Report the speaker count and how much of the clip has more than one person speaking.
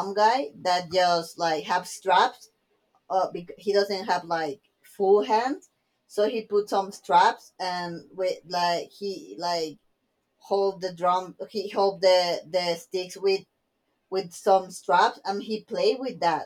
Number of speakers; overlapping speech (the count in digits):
1, no overlap